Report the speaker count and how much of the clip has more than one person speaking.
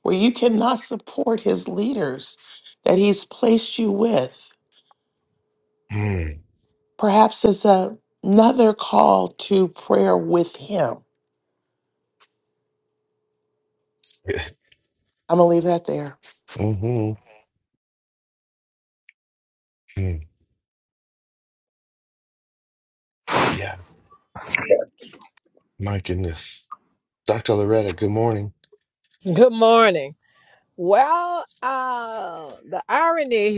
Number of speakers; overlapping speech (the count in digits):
3, no overlap